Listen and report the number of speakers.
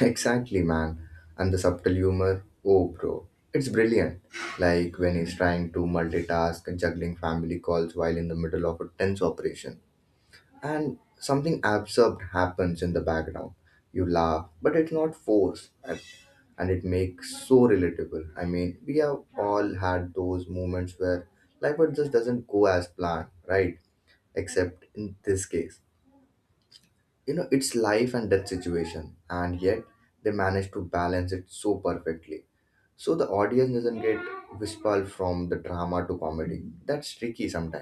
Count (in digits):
1